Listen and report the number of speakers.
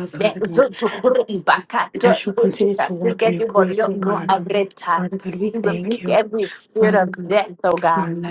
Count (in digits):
2